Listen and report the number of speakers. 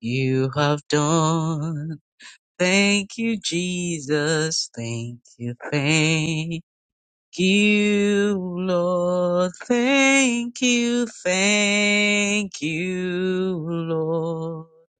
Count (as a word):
one